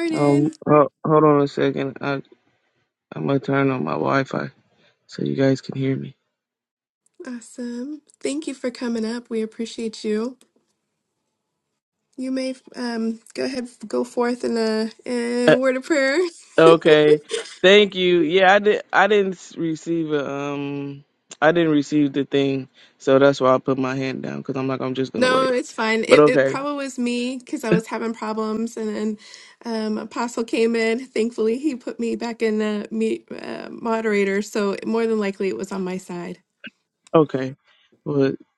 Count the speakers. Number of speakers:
2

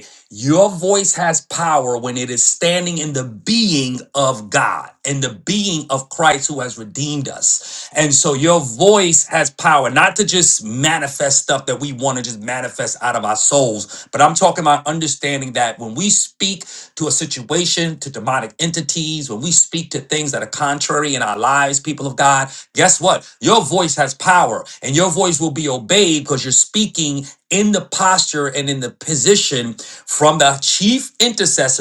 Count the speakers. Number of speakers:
1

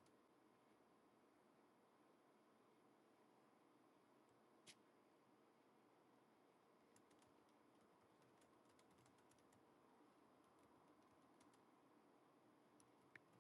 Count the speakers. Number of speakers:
0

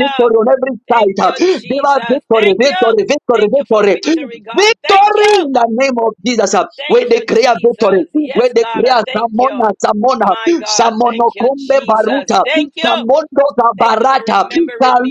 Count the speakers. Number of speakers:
2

